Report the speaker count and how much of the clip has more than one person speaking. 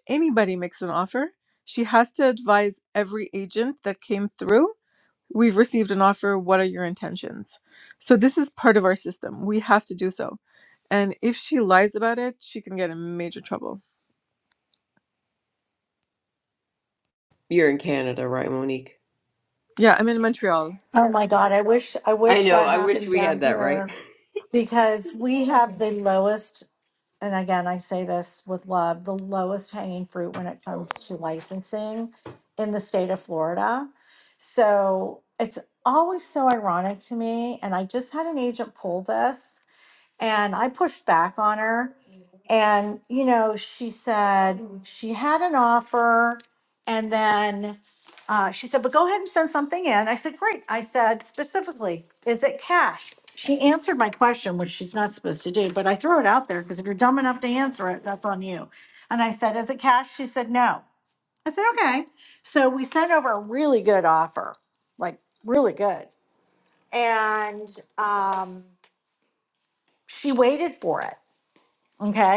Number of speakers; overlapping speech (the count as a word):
three, about 2%